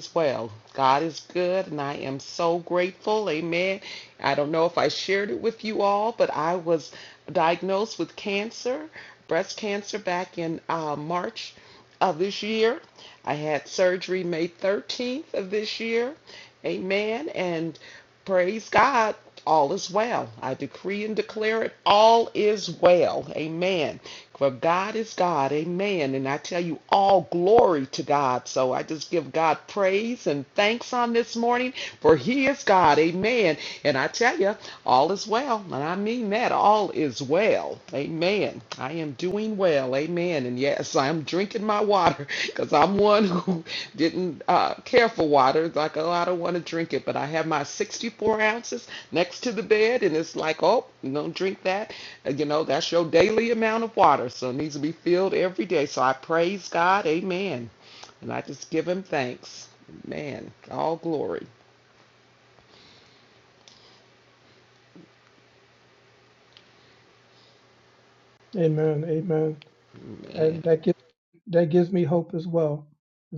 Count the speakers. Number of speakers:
2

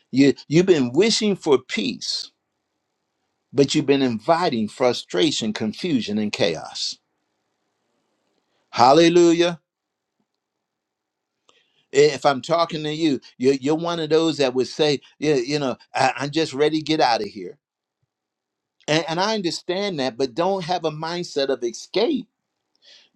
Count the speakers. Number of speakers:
1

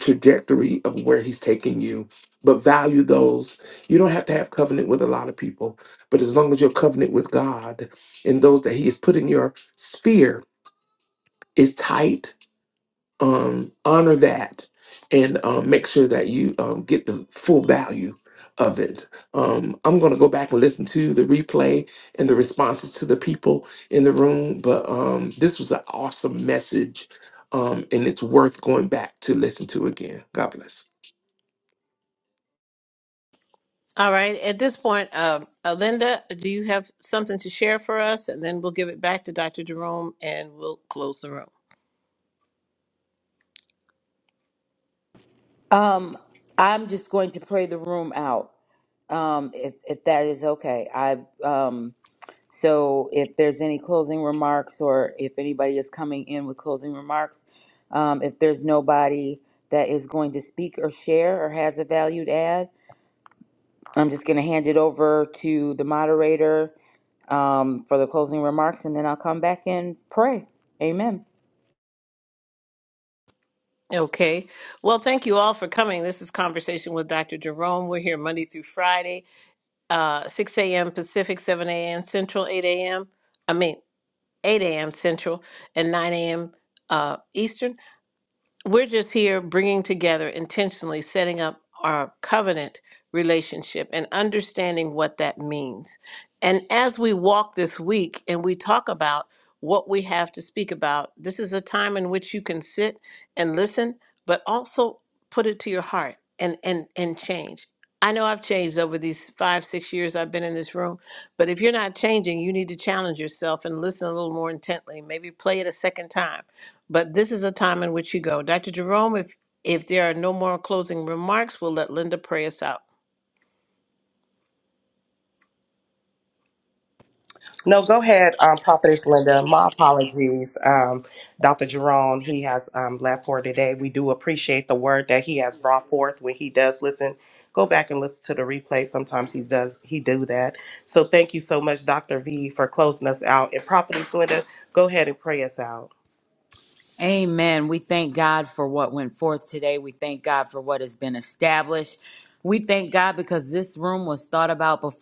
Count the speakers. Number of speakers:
4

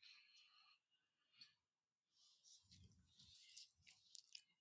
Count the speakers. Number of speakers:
0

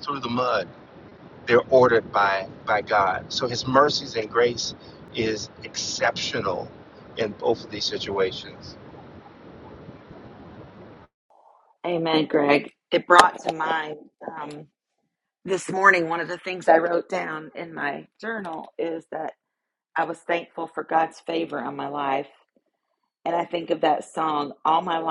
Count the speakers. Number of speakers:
2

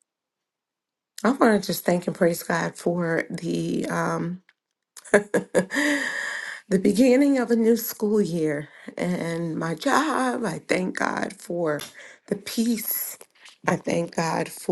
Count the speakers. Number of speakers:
1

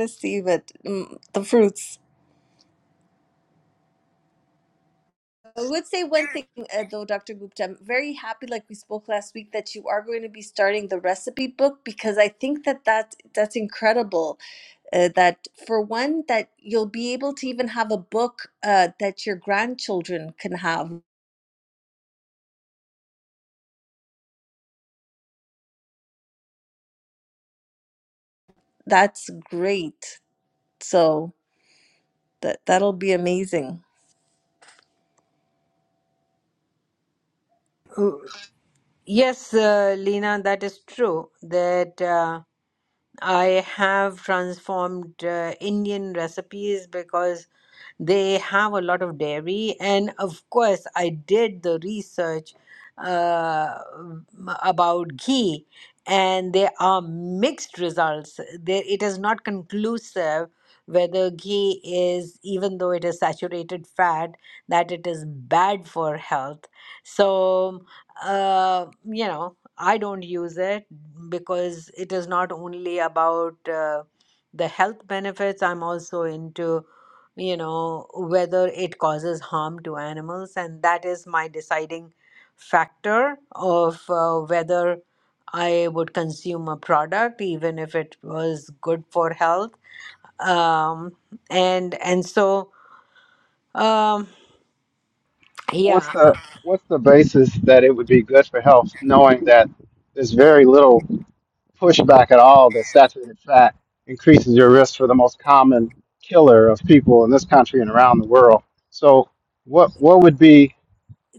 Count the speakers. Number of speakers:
3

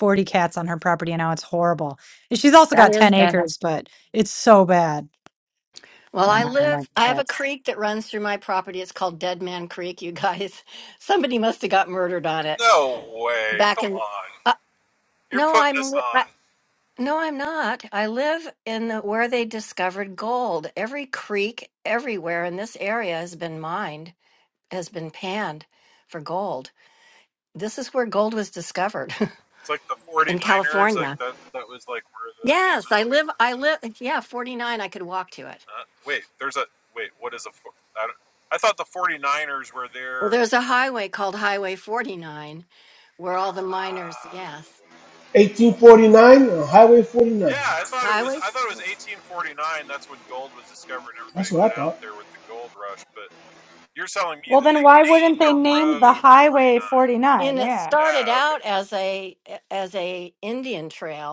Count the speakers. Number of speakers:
4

